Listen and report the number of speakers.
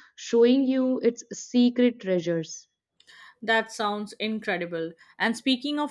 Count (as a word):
two